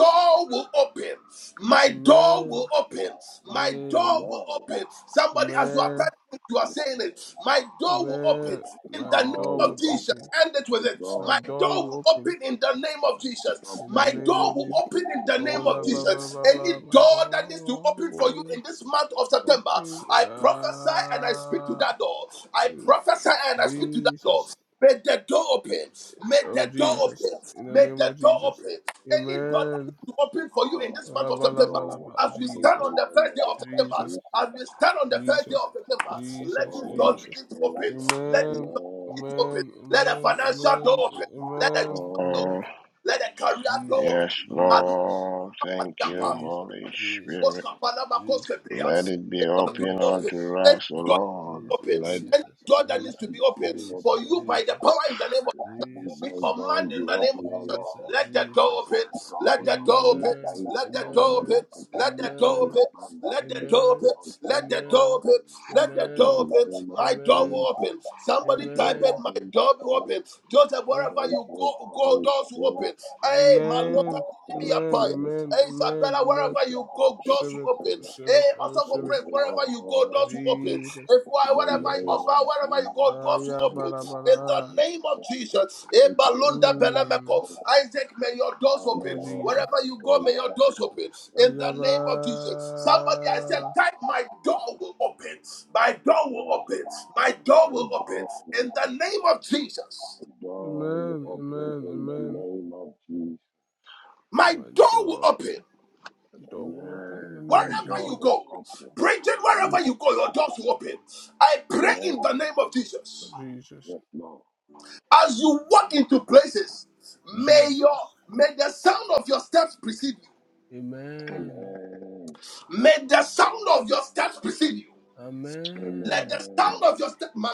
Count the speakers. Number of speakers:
three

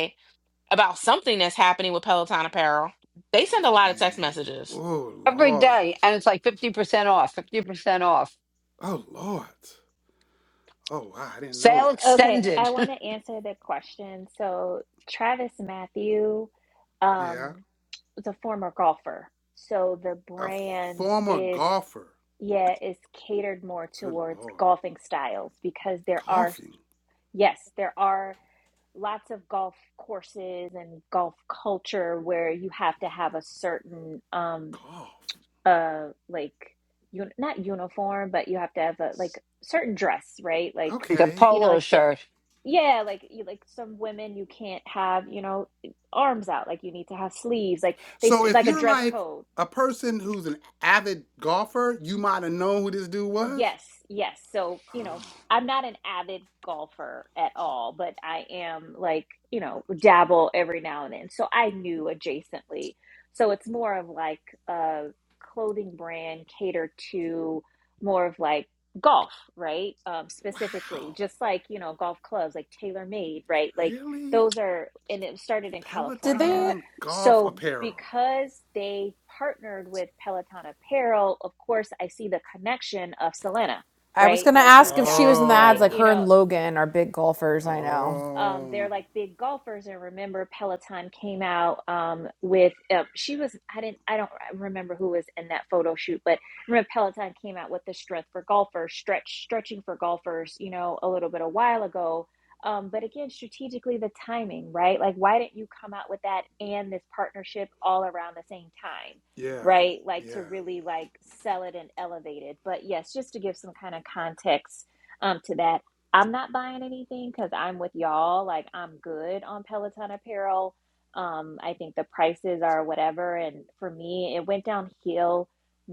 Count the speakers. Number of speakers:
five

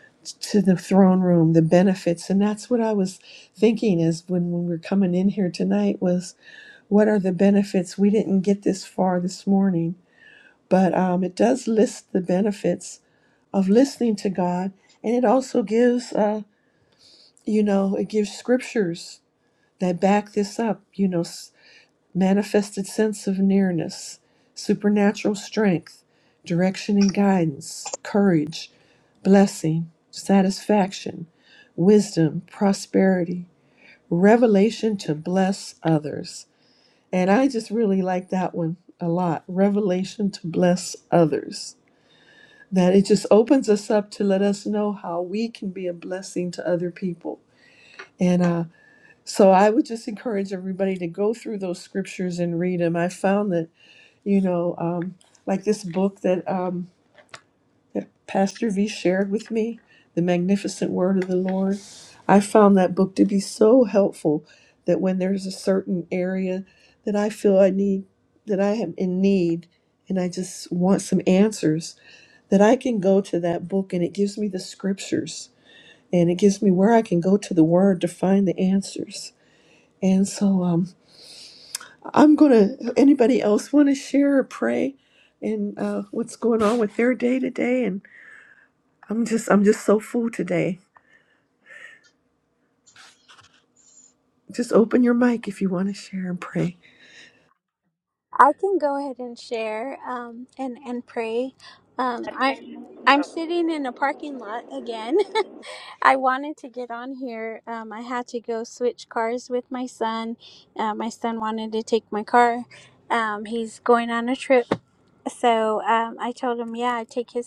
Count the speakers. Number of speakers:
two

